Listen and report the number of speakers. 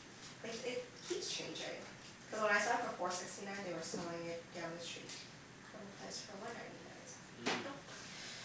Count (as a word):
one